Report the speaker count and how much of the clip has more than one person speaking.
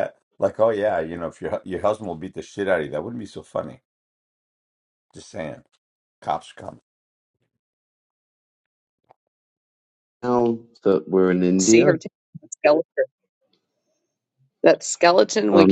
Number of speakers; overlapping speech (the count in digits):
3, about 4%